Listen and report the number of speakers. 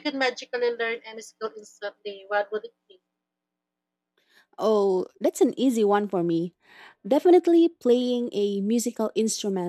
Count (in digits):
2